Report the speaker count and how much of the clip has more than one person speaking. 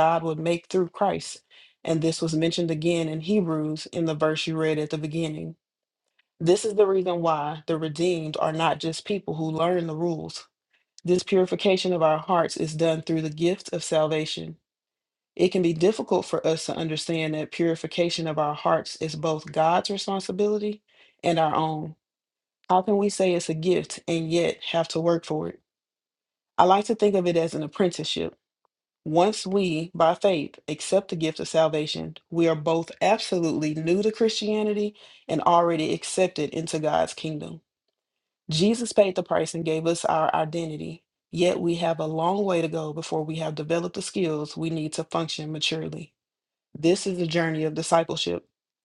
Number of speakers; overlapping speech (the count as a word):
one, no overlap